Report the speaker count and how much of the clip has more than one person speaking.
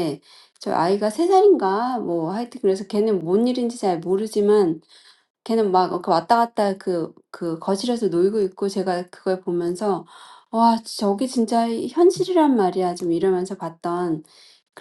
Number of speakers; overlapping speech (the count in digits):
1, no overlap